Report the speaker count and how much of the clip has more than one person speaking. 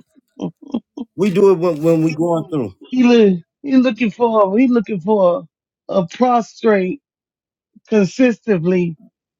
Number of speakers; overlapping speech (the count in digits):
2, no overlap